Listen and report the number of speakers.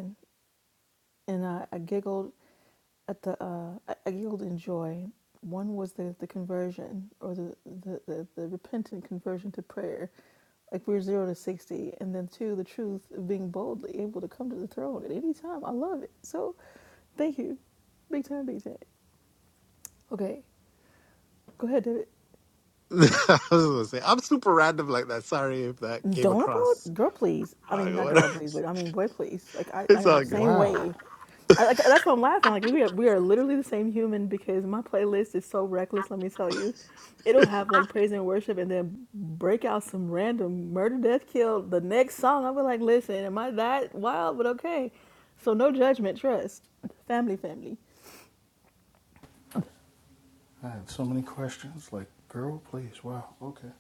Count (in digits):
3